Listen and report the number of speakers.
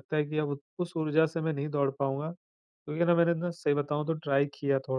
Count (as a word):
one